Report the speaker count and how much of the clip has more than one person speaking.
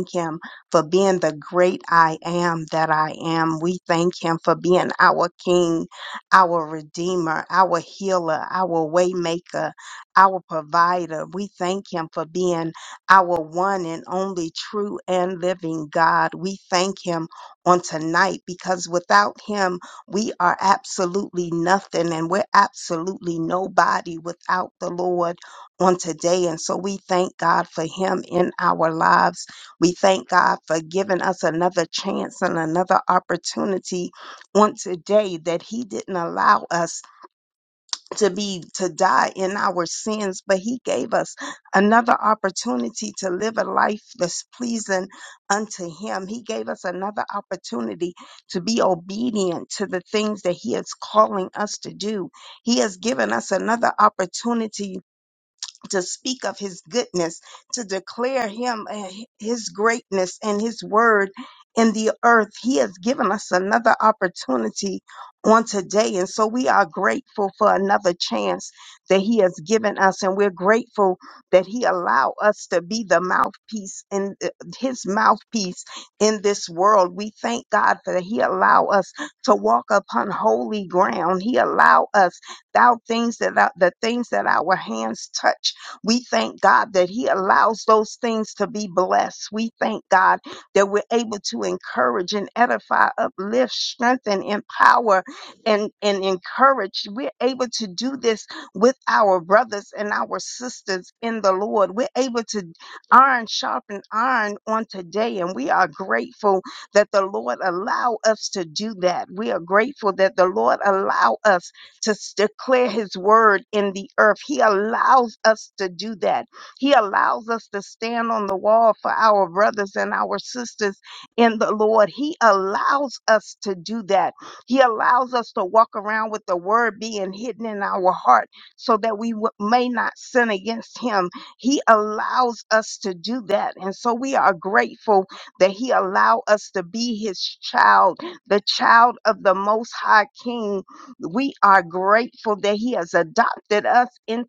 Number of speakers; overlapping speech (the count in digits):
1, no overlap